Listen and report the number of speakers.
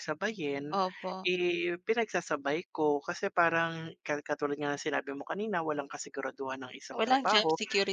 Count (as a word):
two